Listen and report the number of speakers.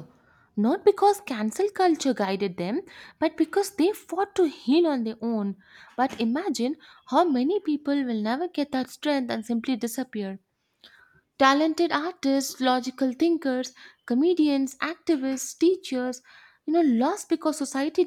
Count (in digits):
1